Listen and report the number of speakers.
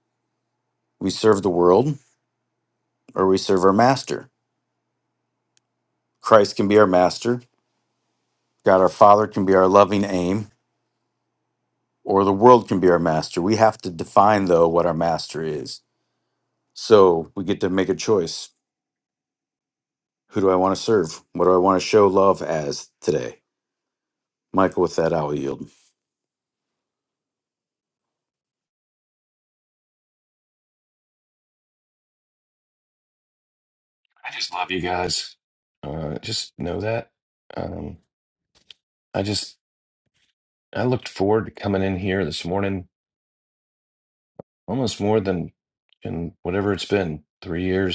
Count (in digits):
2